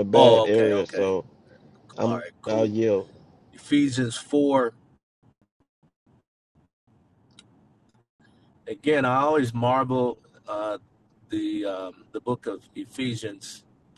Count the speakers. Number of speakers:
two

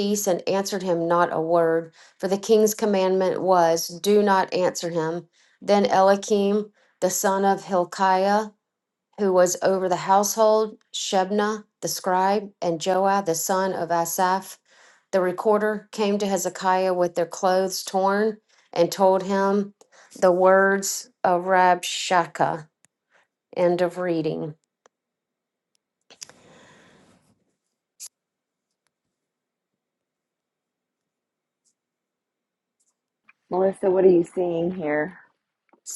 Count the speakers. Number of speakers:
two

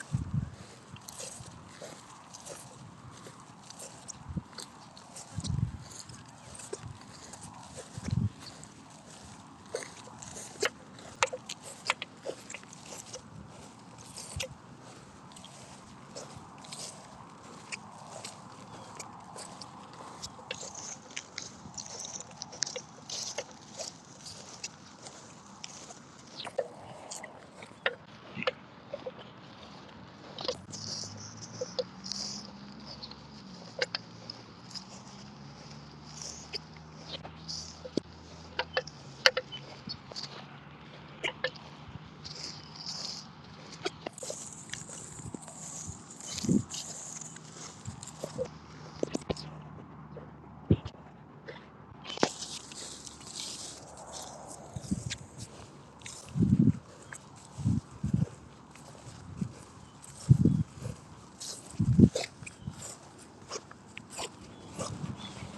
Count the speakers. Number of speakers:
zero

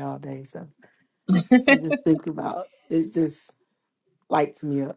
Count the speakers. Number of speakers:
one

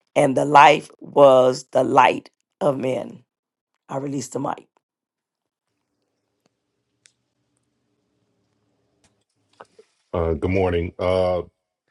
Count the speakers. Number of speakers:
two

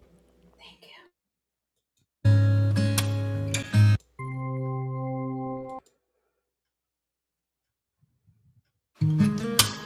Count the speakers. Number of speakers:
zero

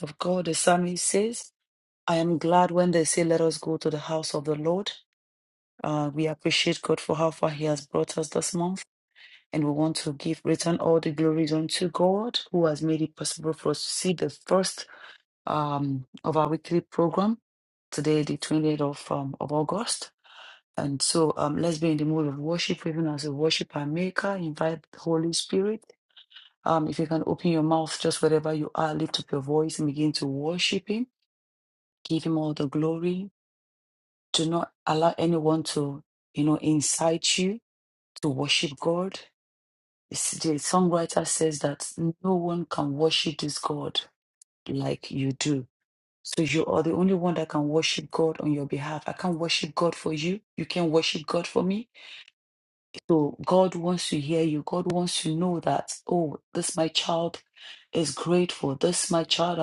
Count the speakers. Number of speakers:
one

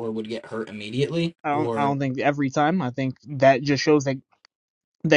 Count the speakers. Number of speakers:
two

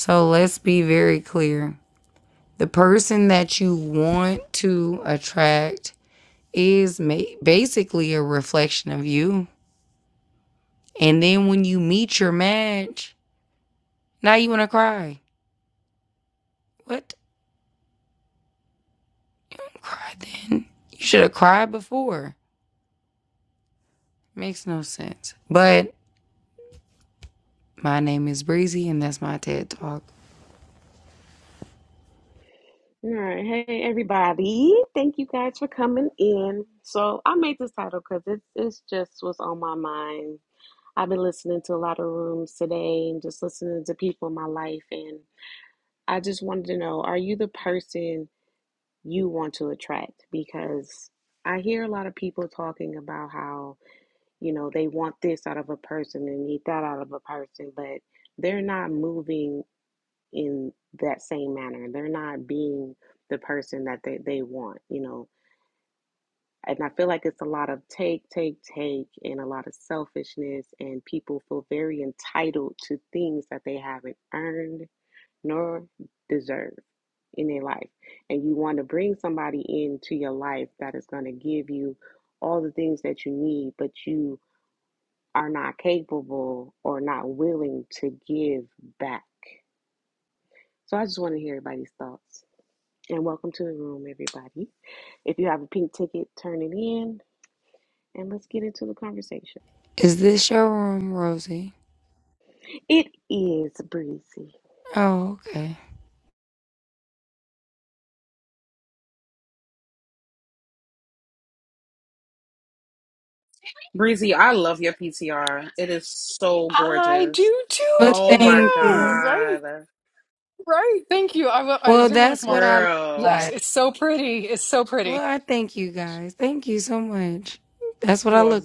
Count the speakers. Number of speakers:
four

